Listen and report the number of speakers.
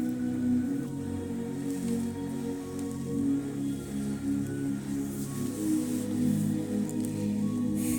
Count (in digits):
0